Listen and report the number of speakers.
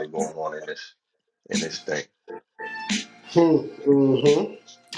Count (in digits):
2